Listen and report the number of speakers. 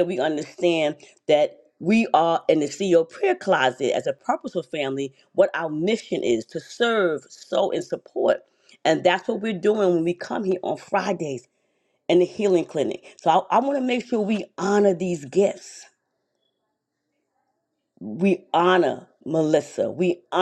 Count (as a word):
one